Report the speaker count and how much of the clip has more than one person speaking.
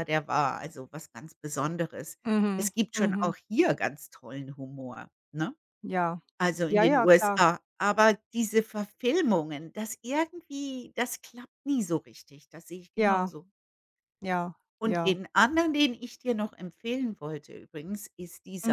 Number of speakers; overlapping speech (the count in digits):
2, about 12%